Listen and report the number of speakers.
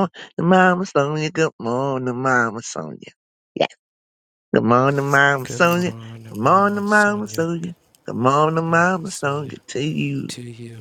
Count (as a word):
two